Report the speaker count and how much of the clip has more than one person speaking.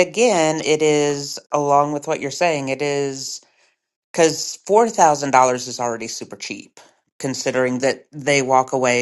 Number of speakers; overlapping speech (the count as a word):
one, no overlap